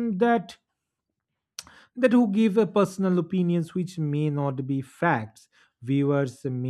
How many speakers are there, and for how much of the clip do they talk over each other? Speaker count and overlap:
one, no overlap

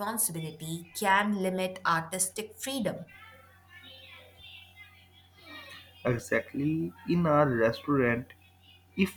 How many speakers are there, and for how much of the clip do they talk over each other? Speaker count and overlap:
two, no overlap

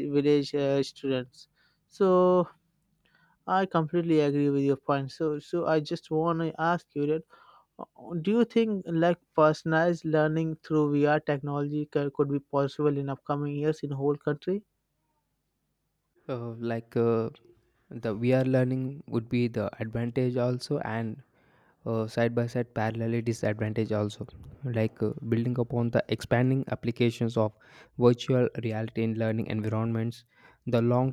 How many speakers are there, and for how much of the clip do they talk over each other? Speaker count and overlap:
two, no overlap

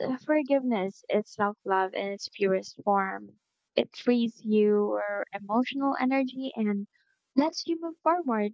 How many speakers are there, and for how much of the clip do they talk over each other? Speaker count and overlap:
one, no overlap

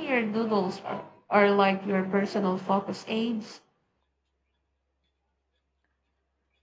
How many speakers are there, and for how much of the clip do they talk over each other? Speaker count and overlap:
one, no overlap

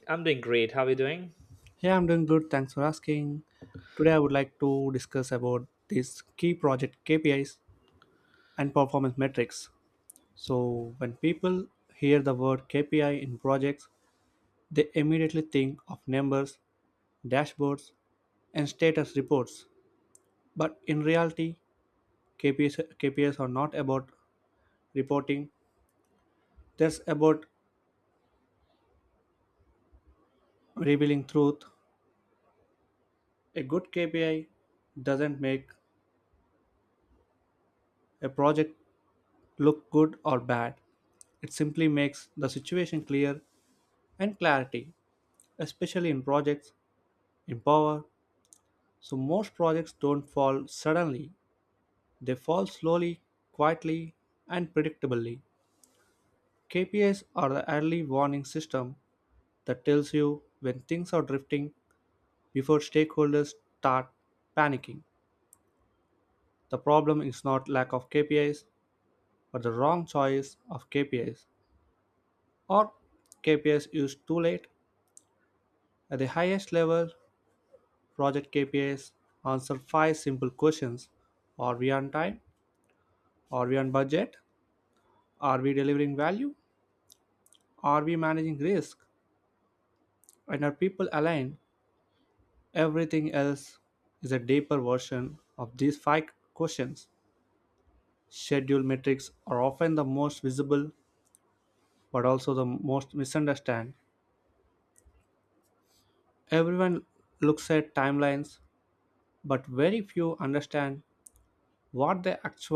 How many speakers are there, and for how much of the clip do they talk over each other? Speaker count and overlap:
two, no overlap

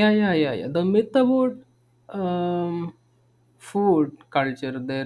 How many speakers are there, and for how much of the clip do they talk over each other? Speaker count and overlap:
one, no overlap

